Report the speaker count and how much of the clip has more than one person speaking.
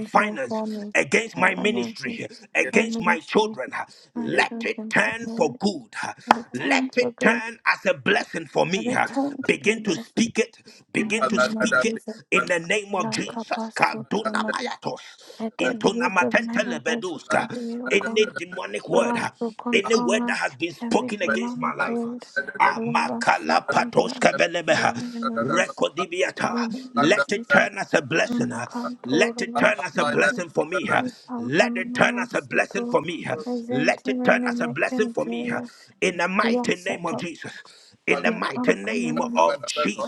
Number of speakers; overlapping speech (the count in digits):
2, about 55%